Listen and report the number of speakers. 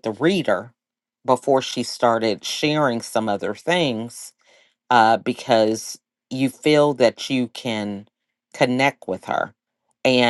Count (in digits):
1